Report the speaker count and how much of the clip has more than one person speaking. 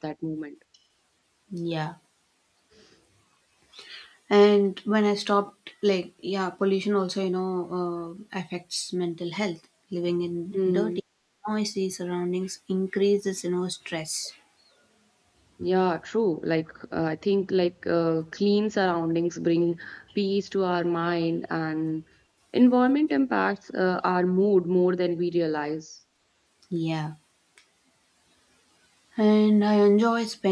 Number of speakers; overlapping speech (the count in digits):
2, about 2%